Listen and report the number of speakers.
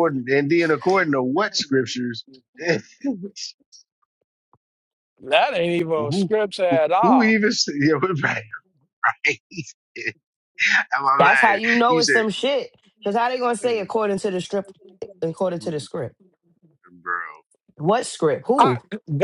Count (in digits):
3